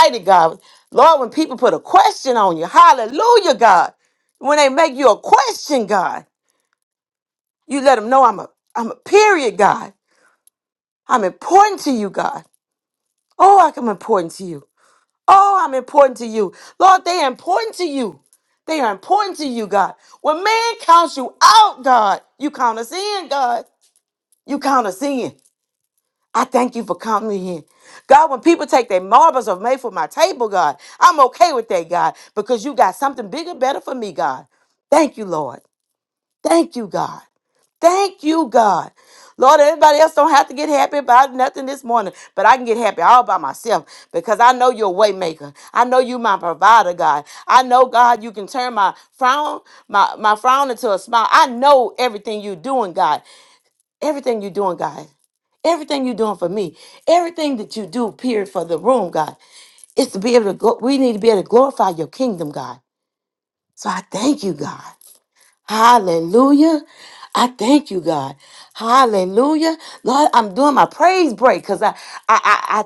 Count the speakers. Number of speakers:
1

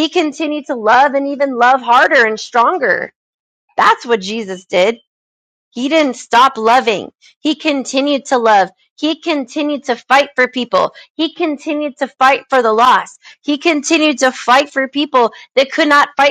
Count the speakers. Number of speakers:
1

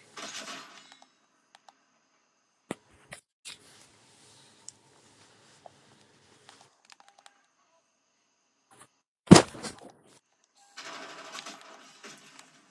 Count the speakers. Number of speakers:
0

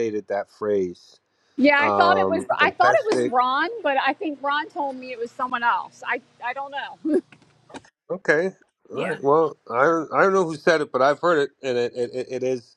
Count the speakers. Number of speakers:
2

